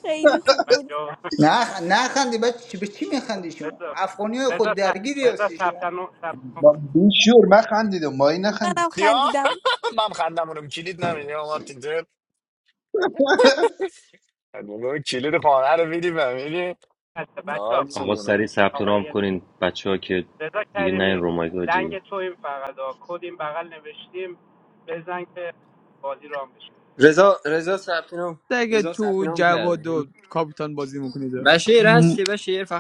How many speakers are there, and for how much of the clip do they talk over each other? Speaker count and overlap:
eight, about 17%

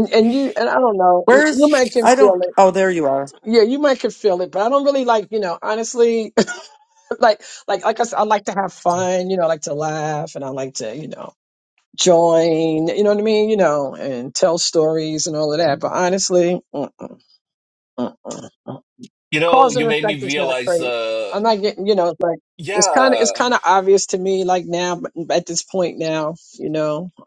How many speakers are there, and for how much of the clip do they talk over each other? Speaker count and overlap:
three, about 12%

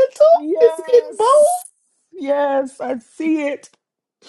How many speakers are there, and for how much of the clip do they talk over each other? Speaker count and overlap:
two, about 18%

